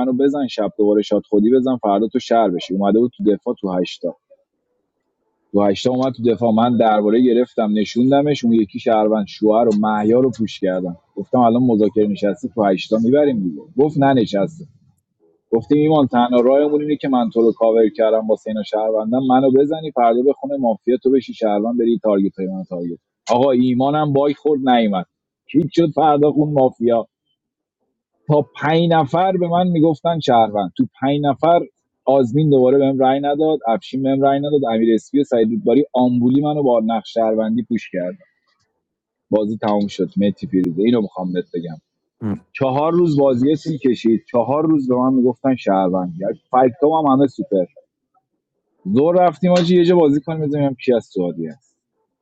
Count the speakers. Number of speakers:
1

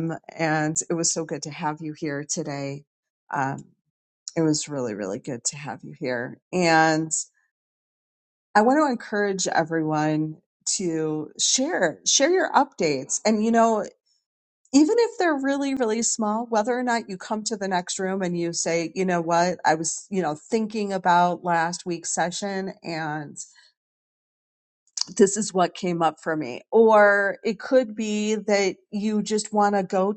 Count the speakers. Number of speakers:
1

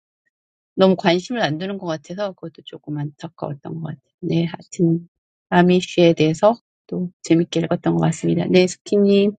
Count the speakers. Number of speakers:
1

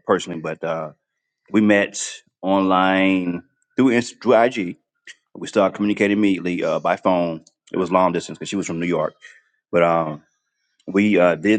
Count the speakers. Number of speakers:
1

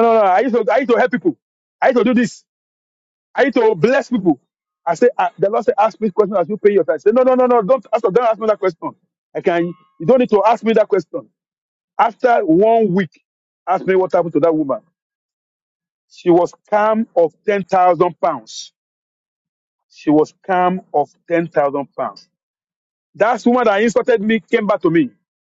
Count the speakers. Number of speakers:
1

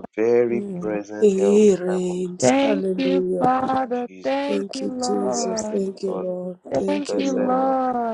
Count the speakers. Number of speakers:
3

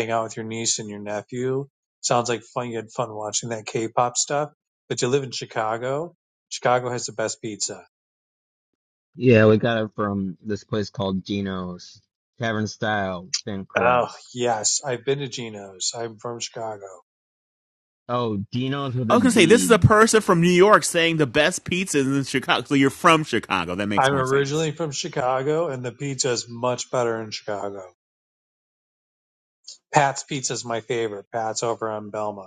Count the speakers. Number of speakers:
3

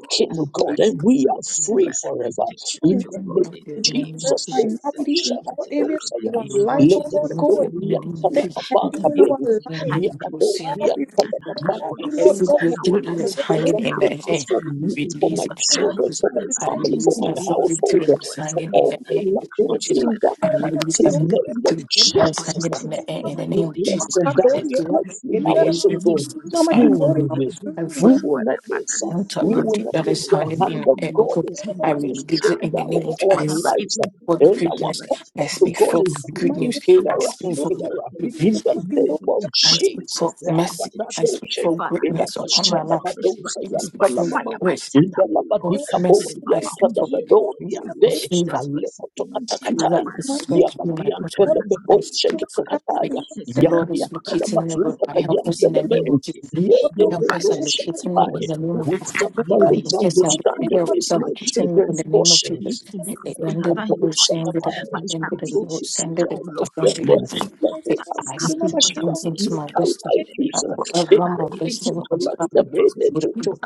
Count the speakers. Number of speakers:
3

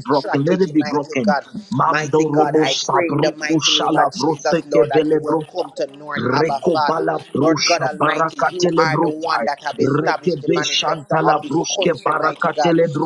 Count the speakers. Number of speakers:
2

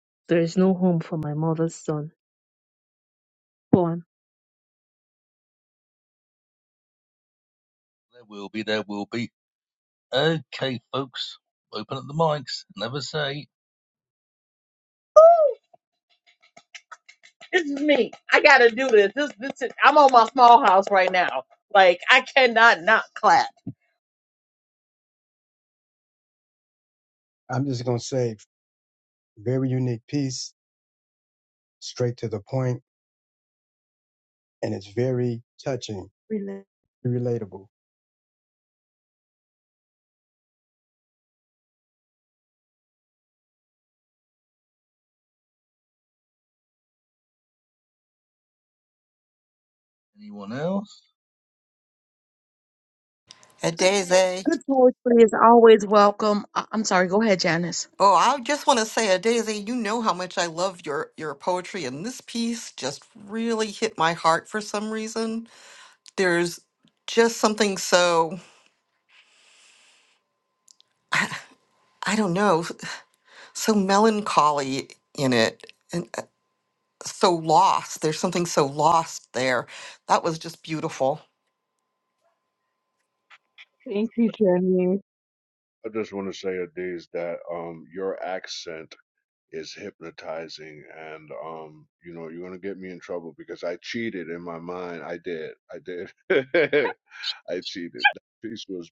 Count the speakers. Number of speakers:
6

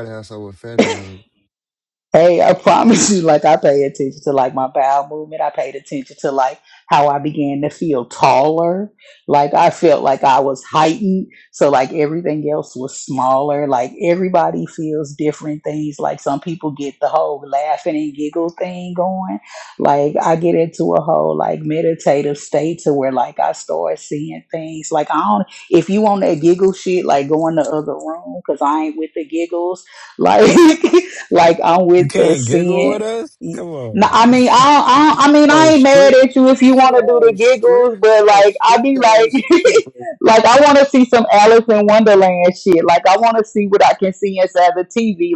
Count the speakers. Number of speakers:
3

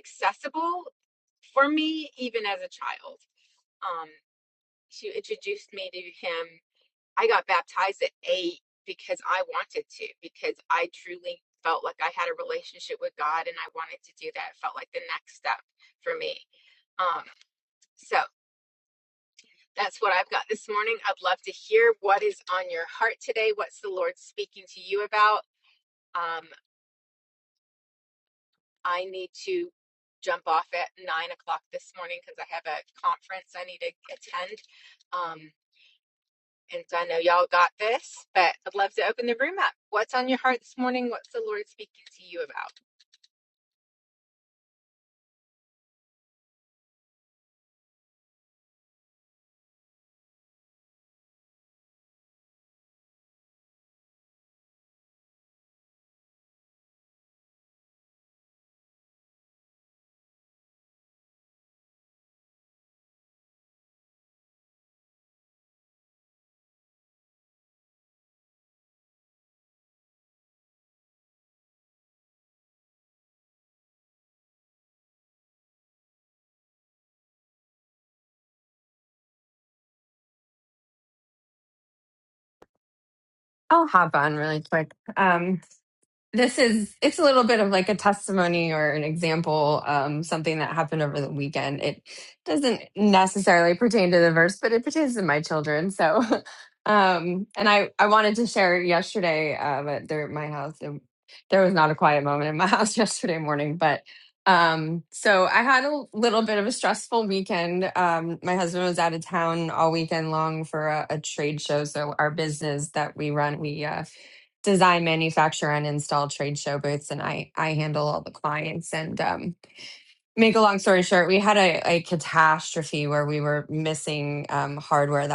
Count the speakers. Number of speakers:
2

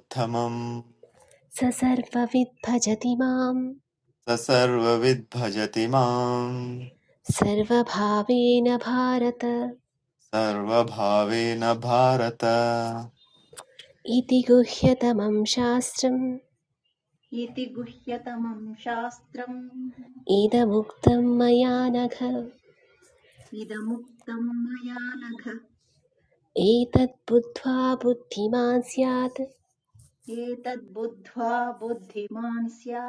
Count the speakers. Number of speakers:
3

